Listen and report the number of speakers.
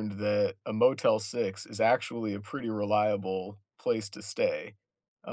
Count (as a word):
one